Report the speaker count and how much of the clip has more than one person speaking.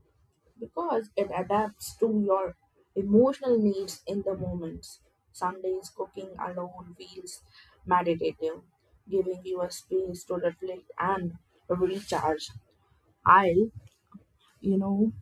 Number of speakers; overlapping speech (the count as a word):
one, no overlap